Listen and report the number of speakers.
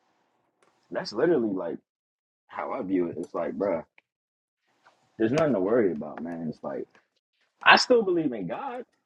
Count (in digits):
1